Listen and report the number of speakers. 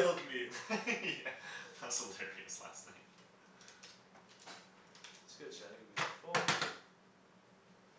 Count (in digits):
2